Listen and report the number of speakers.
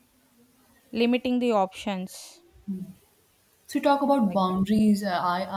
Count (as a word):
two